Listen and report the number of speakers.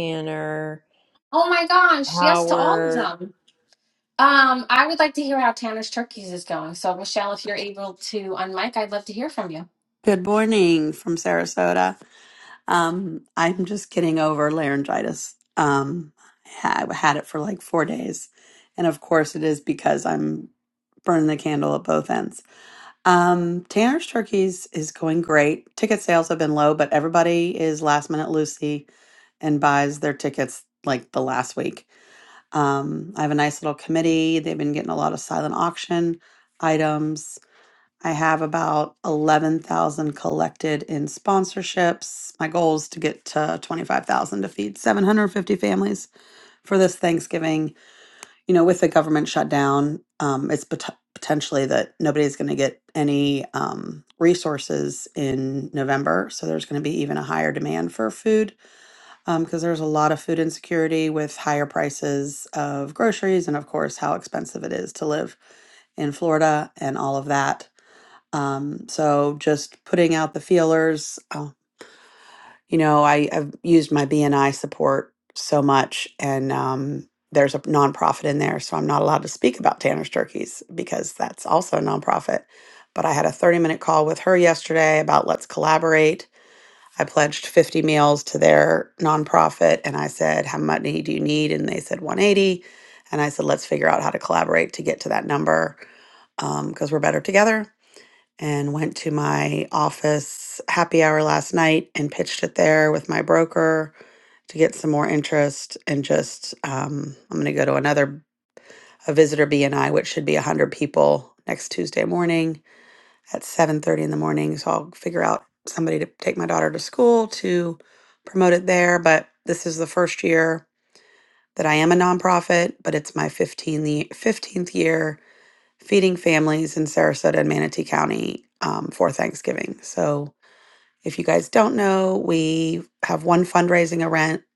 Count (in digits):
3